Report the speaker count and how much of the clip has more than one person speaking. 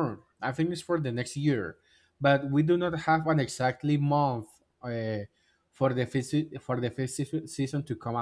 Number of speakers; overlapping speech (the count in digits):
1, no overlap